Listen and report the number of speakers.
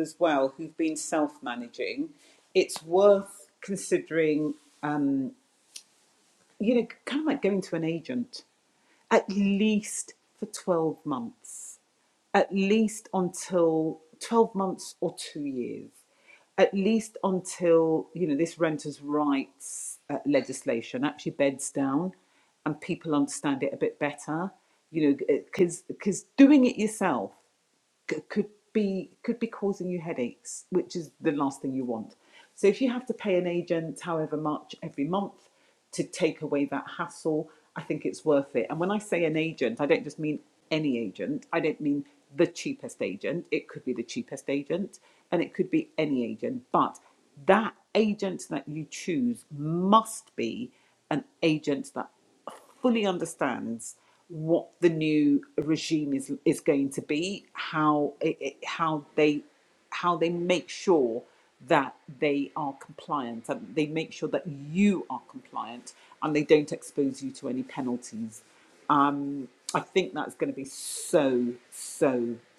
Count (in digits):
1